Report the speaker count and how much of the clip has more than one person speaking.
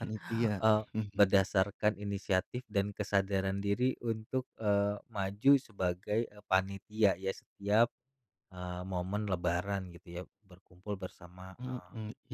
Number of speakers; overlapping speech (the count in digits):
2, about 3%